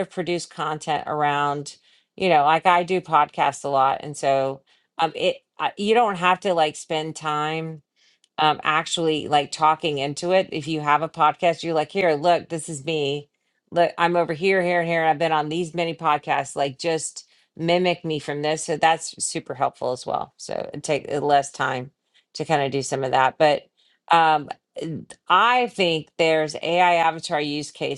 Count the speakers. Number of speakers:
1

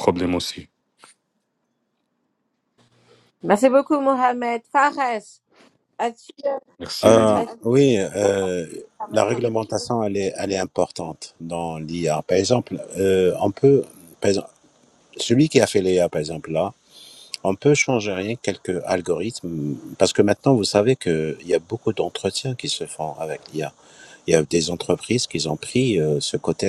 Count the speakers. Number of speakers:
3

